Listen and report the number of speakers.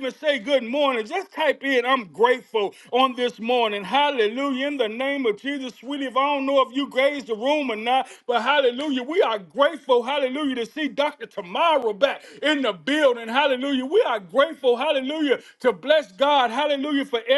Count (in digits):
1